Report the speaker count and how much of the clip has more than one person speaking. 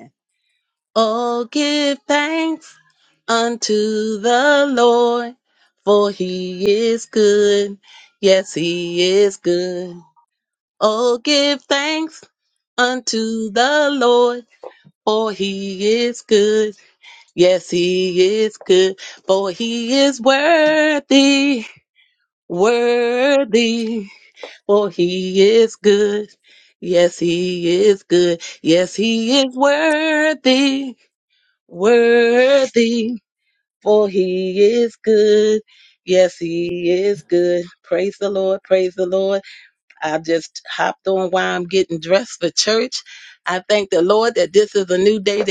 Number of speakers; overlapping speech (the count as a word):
one, no overlap